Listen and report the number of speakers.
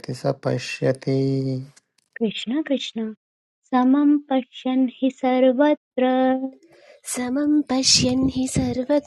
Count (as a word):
three